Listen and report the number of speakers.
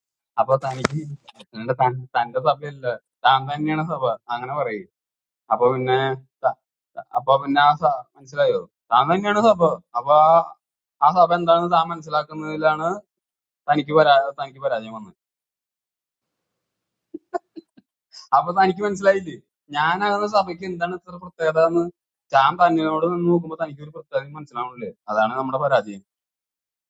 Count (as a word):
one